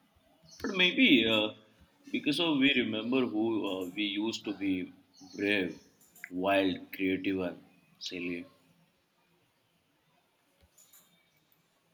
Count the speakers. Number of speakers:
one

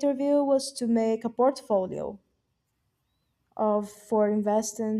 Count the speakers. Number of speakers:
one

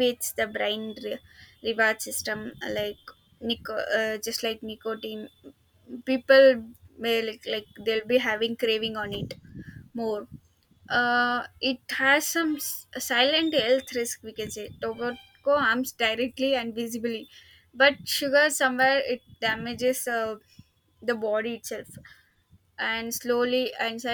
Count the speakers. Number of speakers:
one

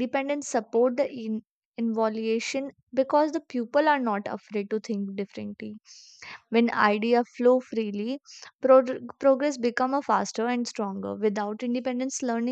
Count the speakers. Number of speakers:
one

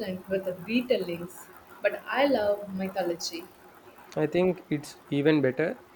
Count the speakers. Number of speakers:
two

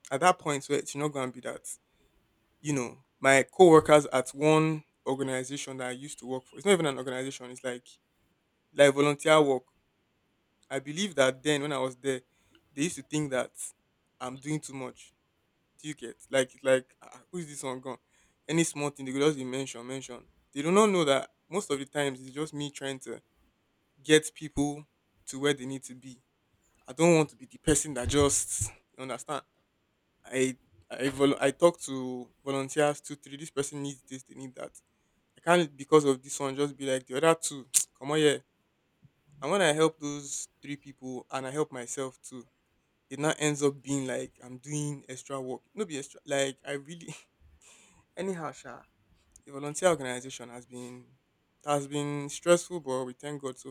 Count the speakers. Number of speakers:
one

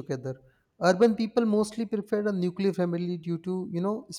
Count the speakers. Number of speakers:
one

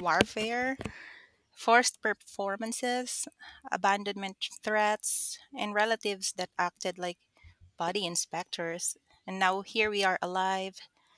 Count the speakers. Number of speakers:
one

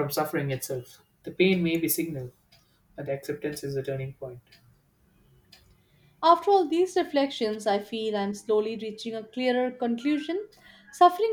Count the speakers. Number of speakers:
two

